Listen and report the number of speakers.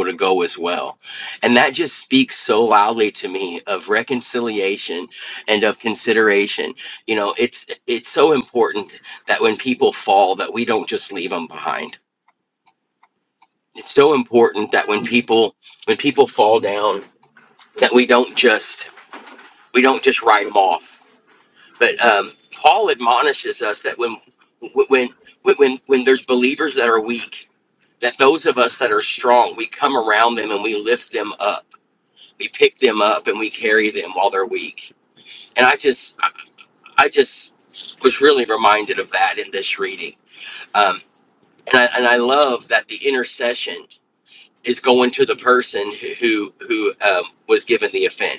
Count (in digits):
1